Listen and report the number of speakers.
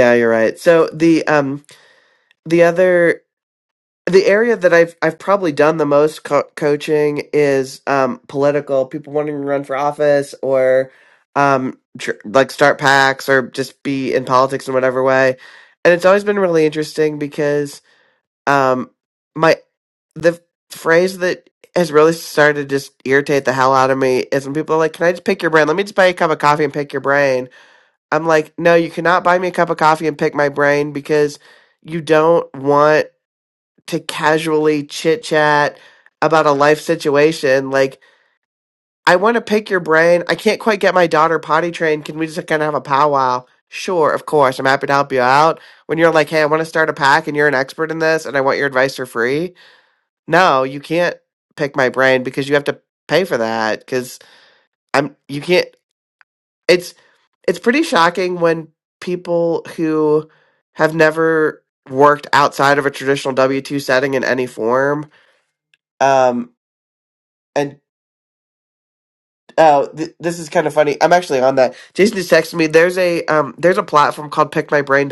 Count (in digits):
1